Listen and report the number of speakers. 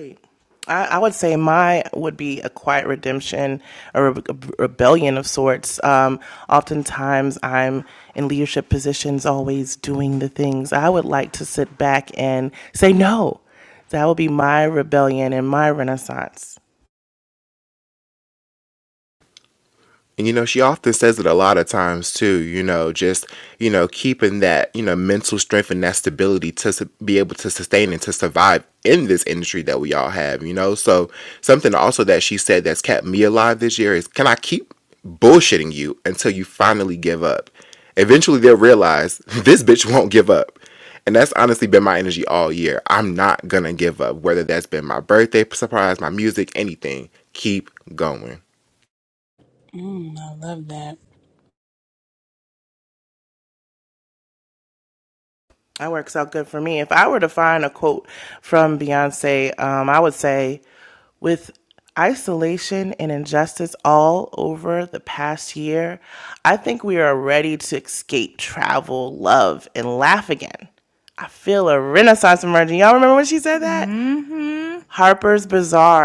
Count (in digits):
4